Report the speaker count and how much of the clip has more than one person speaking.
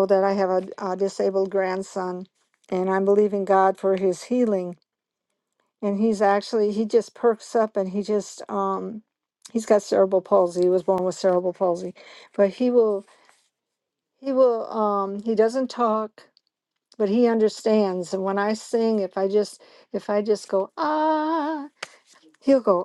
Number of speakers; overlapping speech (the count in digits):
1, no overlap